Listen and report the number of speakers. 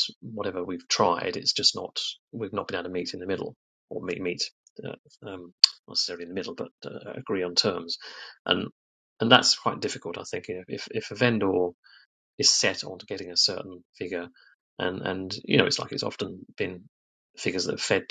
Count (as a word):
one